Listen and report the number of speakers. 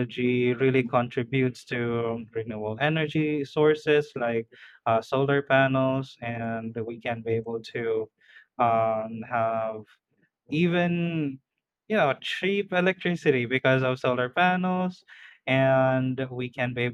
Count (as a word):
one